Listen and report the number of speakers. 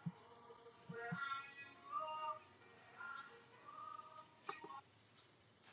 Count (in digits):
0